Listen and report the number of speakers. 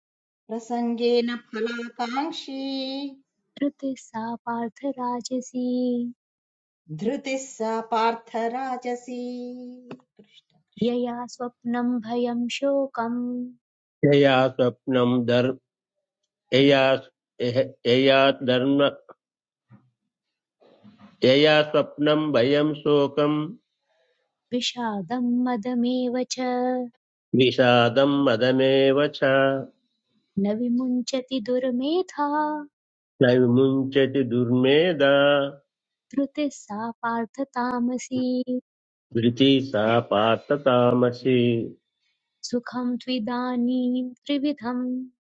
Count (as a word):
three